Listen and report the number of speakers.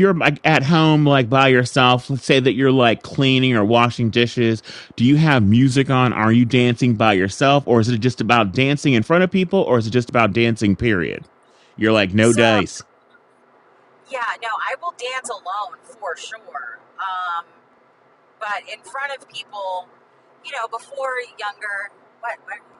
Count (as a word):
two